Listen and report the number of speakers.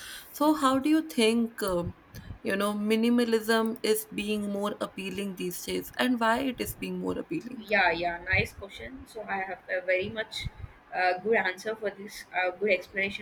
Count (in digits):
2